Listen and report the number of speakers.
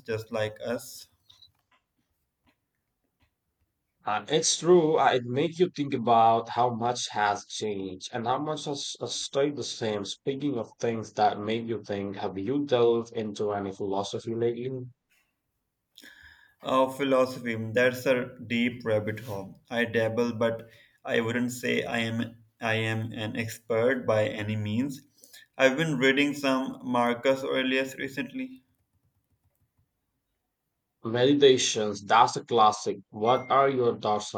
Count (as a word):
two